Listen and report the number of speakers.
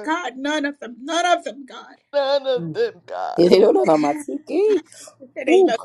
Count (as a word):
three